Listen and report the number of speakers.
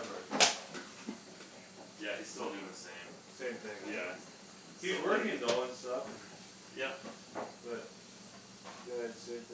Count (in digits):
2